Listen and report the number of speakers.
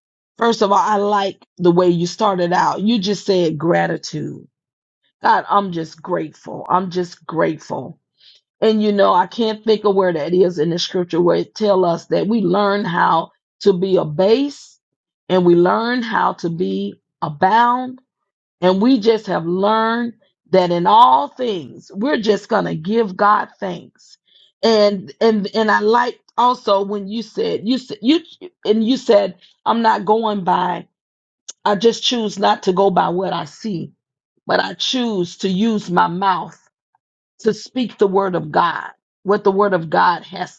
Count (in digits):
1